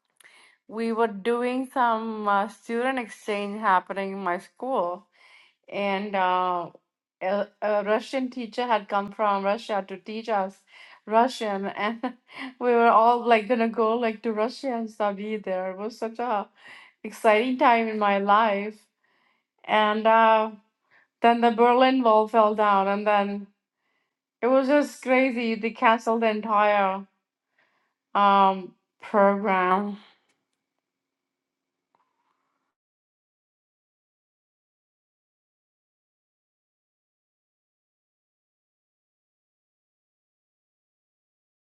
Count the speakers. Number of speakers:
one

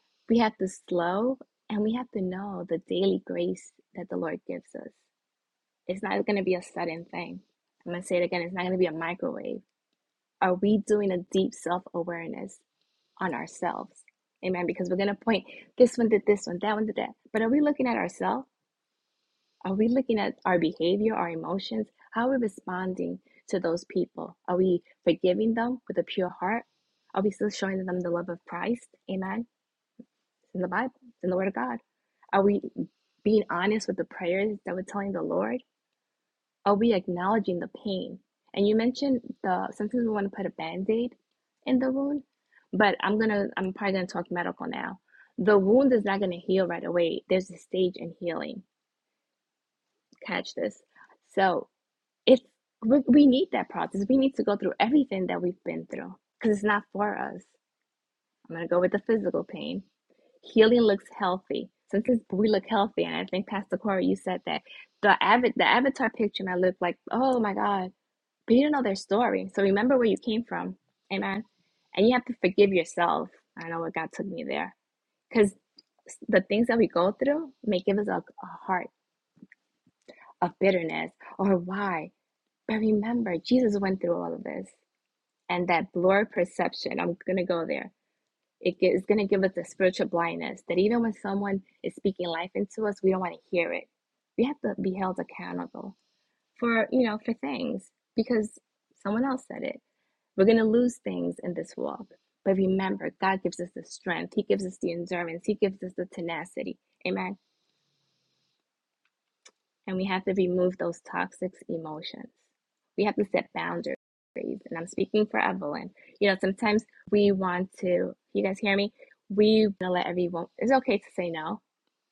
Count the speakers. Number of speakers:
one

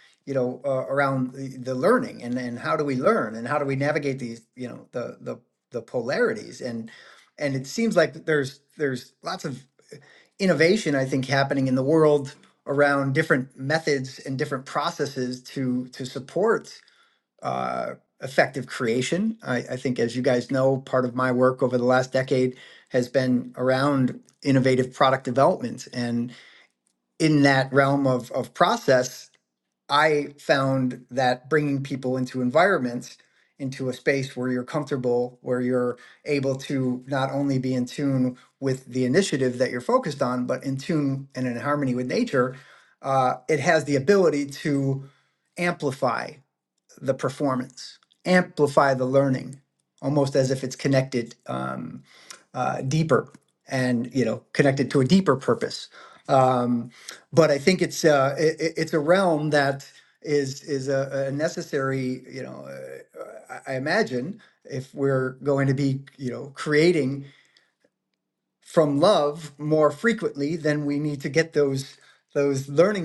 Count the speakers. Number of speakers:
one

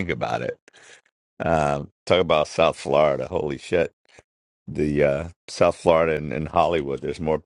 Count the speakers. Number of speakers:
one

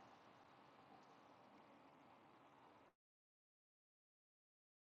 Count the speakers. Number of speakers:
zero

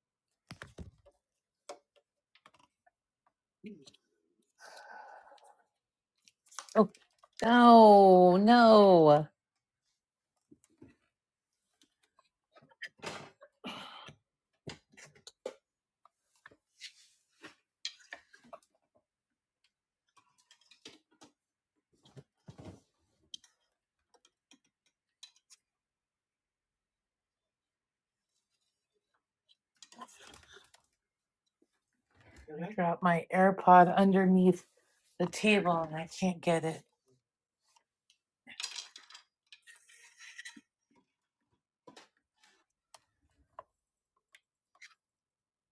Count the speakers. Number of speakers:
one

